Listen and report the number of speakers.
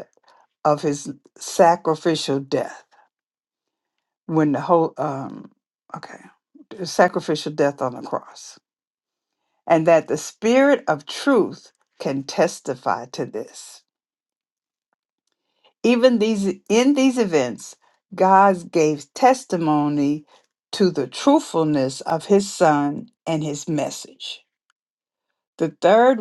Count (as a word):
one